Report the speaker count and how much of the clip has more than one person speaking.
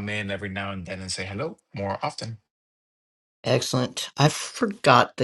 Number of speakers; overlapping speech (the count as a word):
two, no overlap